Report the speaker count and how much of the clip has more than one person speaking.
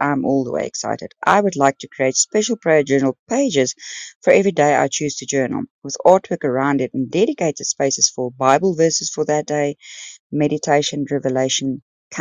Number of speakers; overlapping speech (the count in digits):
1, no overlap